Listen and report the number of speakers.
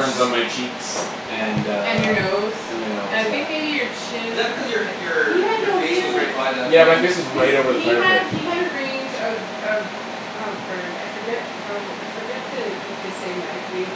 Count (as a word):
three